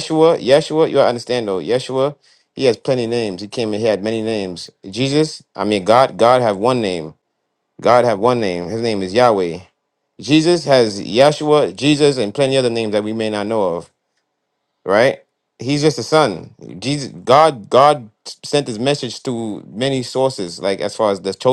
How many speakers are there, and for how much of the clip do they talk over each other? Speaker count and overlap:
1, no overlap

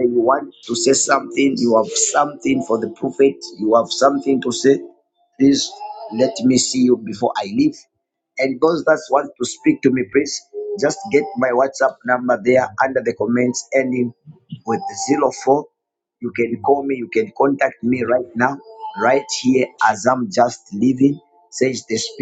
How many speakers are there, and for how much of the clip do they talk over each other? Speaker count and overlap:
1, no overlap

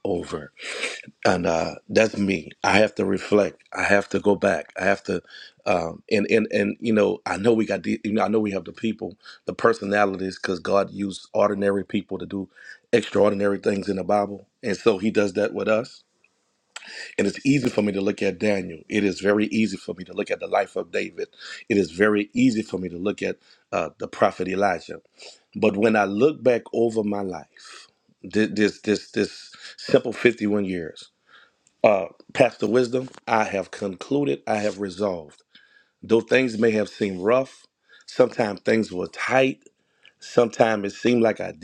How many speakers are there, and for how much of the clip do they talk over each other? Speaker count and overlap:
1, no overlap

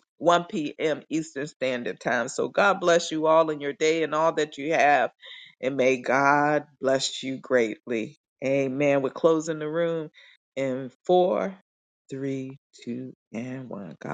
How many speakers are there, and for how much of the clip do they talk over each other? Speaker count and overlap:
1, no overlap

